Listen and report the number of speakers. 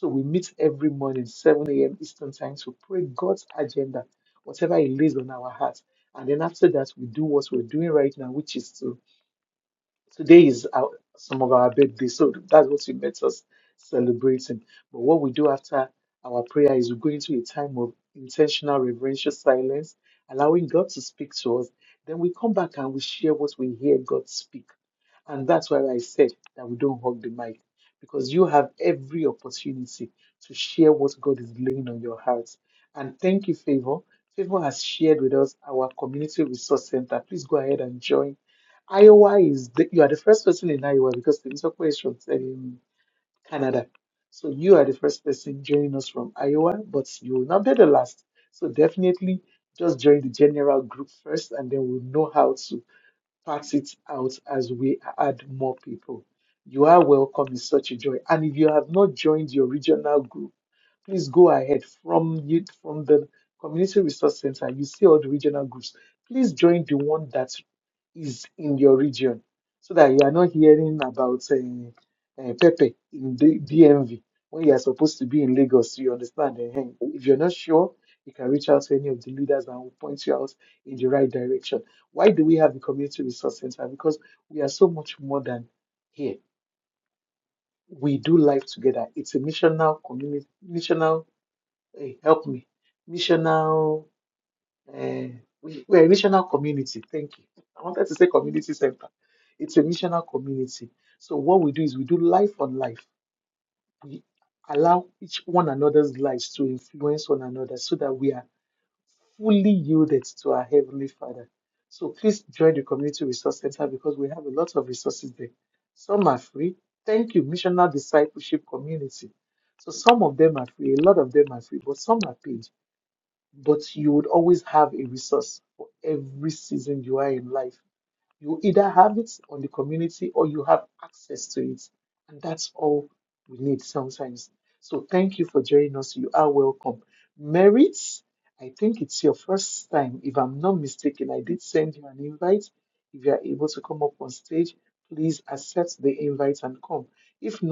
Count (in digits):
1